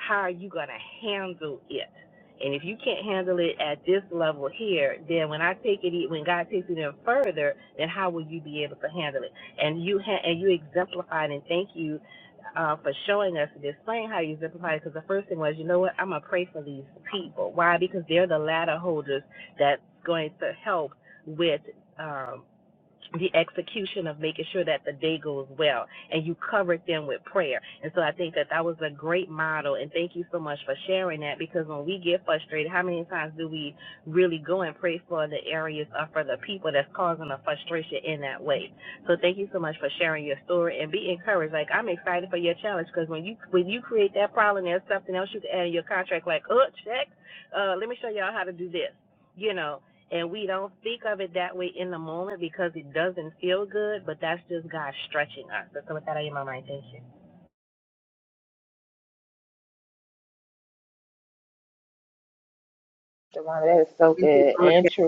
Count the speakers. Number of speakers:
2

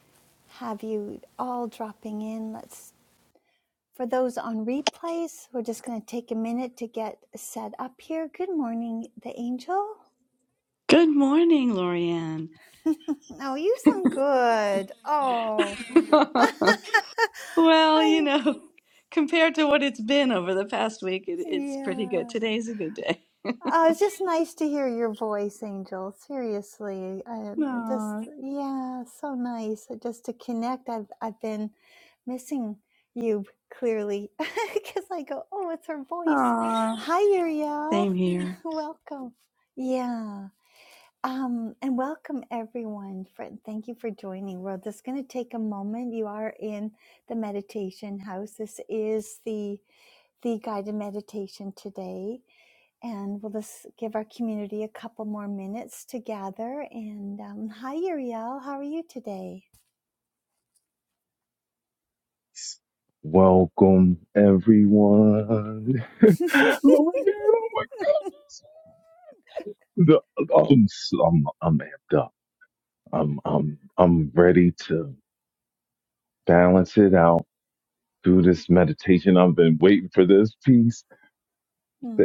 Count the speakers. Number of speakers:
3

